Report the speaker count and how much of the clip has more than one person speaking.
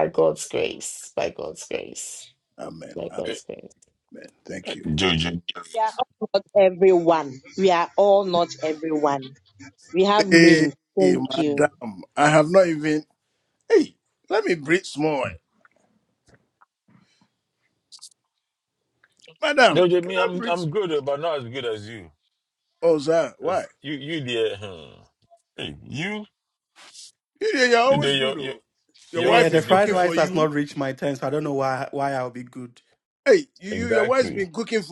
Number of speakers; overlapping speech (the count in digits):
5, about 15%